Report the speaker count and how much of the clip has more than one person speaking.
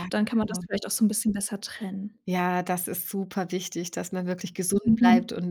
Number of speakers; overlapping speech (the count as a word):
two, about 10%